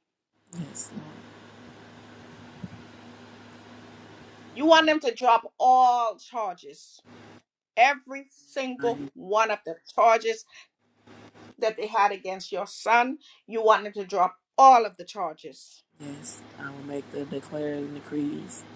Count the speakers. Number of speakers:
two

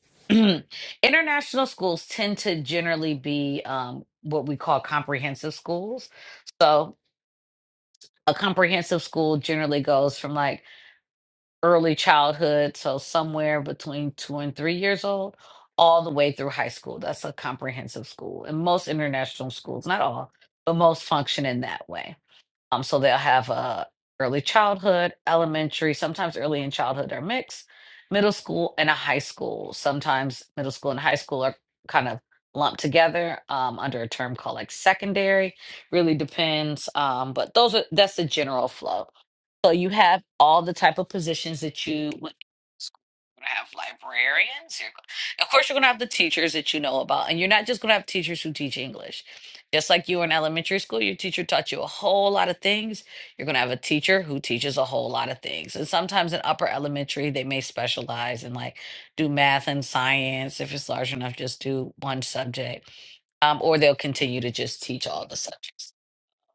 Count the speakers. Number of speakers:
one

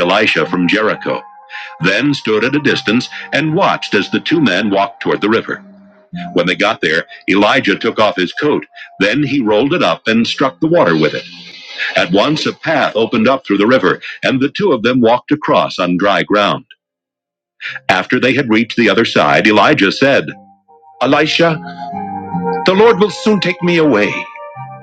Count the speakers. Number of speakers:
one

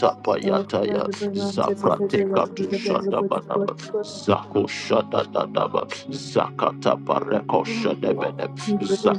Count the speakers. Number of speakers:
two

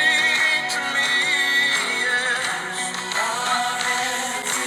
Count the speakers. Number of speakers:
zero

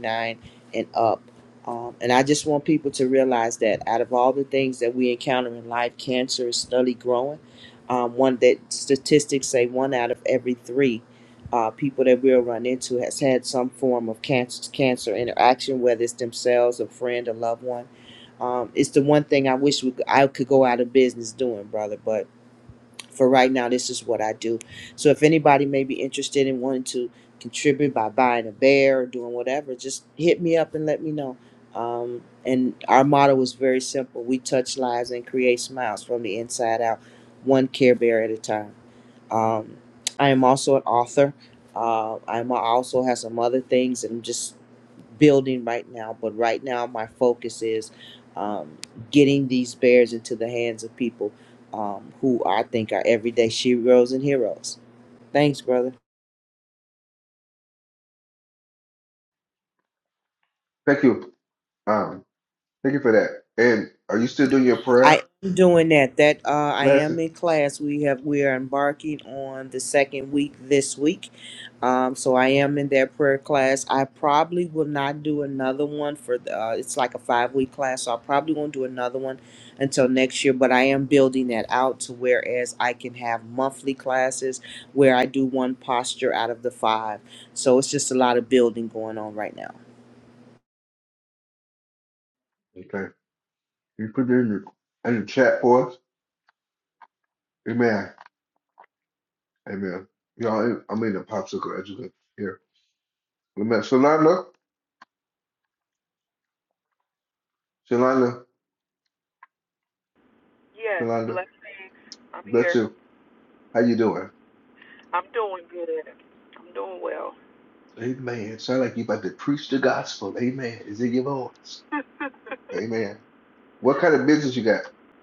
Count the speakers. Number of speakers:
three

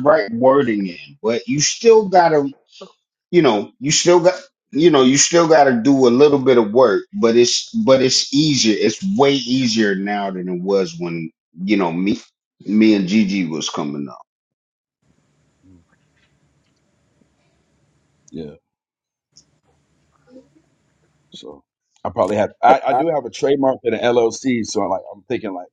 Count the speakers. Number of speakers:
two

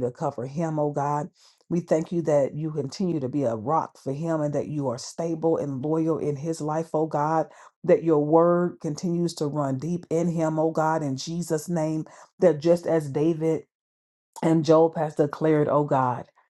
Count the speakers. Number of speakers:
one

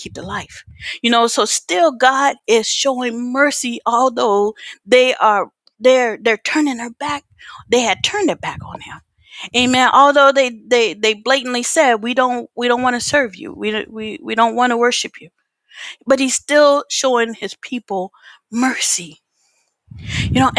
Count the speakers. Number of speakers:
one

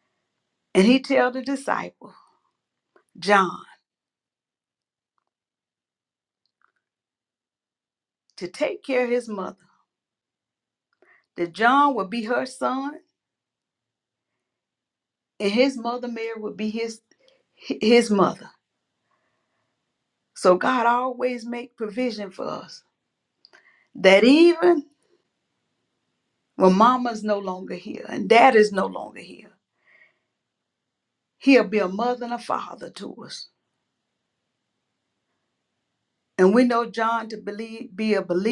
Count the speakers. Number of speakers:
one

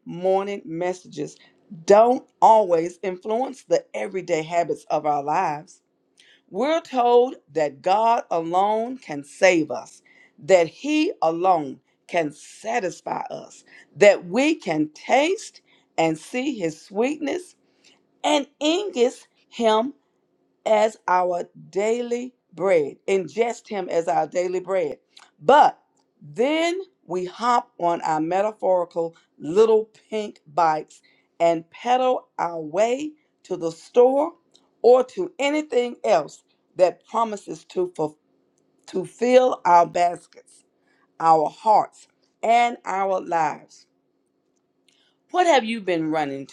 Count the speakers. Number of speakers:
one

